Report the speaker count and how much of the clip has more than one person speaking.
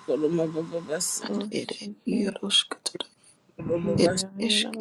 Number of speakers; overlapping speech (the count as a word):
three, about 36%